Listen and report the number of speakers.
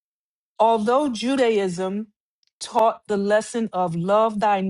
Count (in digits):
1